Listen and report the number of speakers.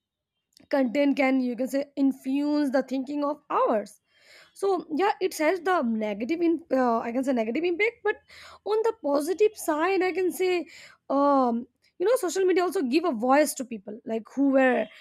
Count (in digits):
1